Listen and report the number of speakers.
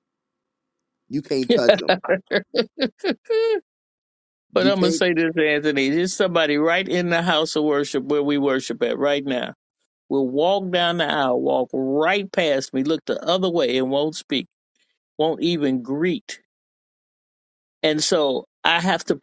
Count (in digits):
2